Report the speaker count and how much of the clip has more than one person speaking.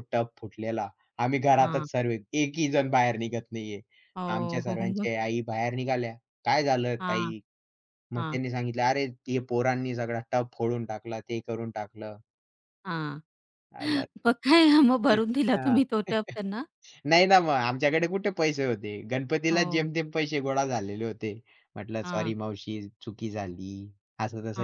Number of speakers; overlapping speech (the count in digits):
2, about 11%